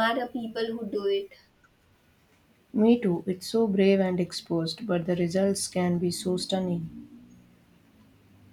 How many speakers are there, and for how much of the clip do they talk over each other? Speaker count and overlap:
2, no overlap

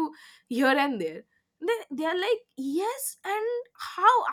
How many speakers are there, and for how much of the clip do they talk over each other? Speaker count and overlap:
1, no overlap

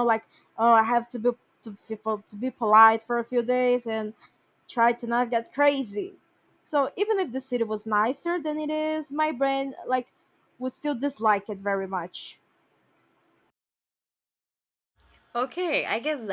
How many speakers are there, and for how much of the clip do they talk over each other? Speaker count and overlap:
2, no overlap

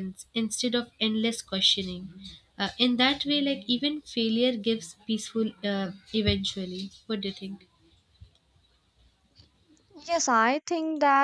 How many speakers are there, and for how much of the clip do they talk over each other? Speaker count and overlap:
2, no overlap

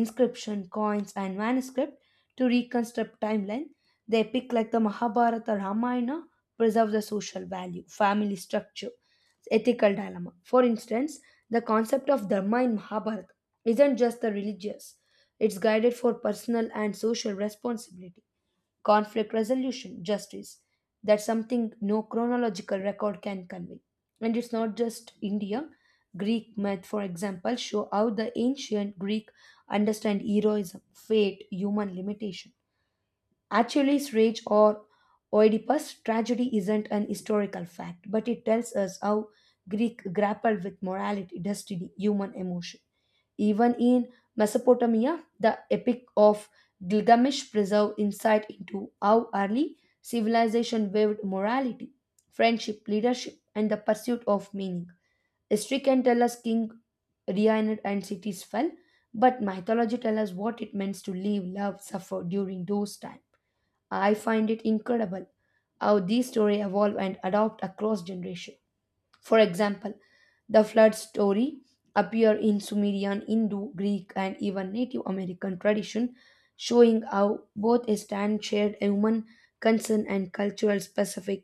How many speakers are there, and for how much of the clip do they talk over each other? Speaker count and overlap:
1, no overlap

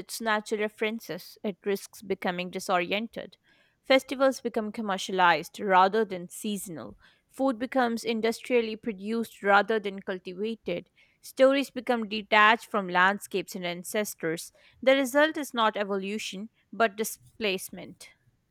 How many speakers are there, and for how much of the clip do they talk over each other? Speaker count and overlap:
1, no overlap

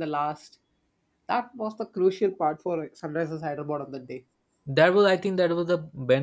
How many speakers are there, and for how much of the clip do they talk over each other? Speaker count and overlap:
2, no overlap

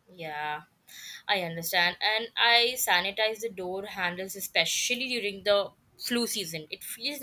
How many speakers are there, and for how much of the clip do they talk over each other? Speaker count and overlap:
1, no overlap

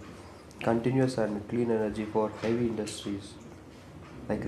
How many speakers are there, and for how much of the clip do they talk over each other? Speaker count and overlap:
1, no overlap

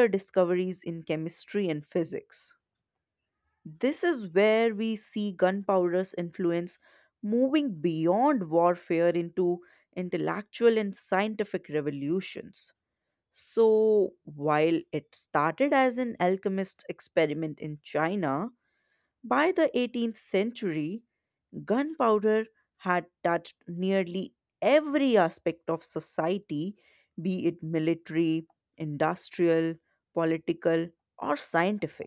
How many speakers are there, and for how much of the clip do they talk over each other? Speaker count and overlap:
1, no overlap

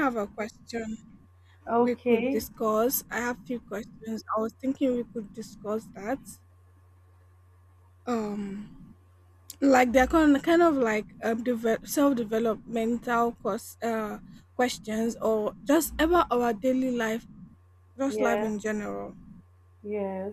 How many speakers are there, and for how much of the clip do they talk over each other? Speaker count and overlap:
2, about 5%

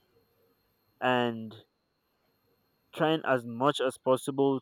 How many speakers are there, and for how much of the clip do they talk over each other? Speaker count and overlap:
1, no overlap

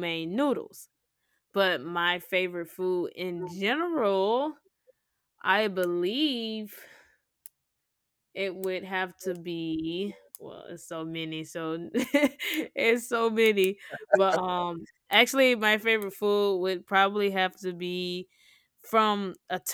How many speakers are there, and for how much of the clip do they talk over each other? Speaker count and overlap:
1, no overlap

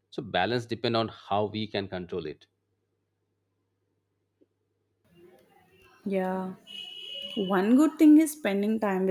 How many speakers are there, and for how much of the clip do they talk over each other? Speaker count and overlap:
2, no overlap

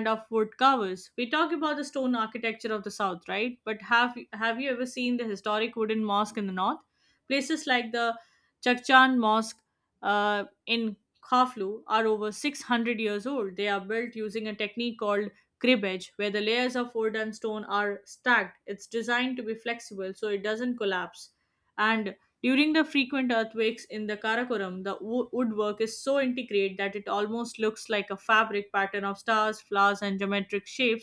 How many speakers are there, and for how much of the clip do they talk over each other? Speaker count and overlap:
1, no overlap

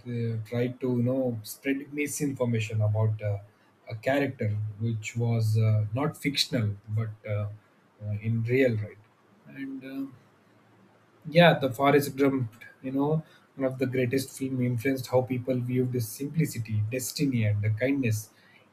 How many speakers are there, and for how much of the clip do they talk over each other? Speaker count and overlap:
1, no overlap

